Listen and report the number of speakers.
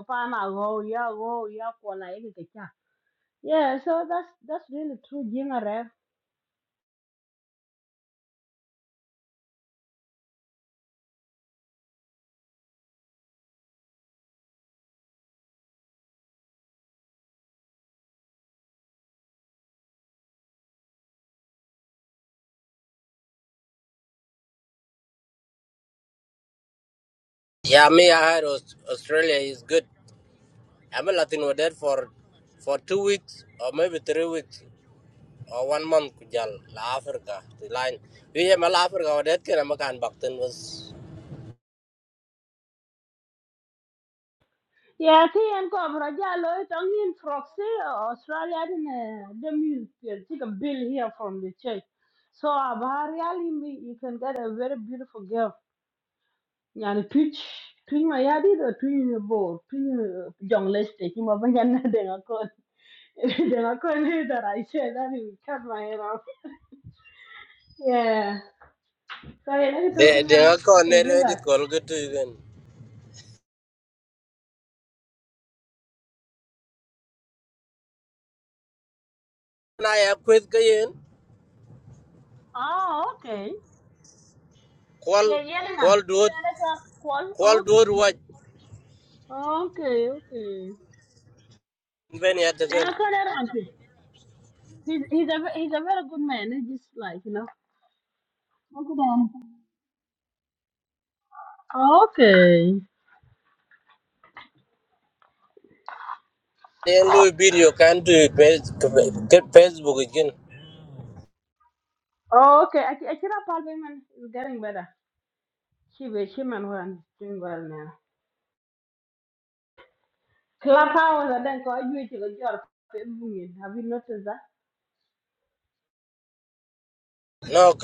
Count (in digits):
2